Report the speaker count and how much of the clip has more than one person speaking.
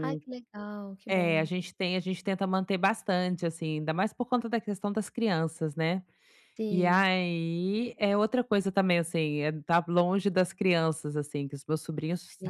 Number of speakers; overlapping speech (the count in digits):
2, about 7%